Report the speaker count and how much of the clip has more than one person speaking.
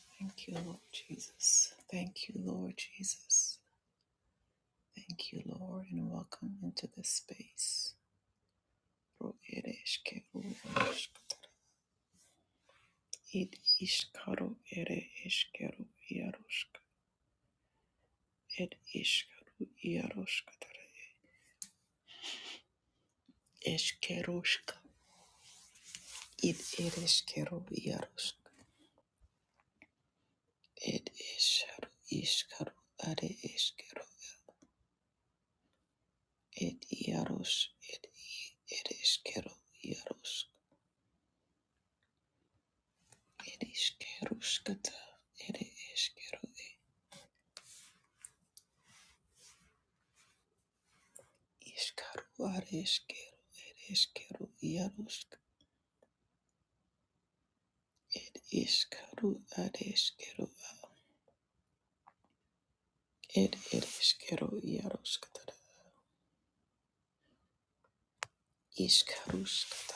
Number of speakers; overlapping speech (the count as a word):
one, no overlap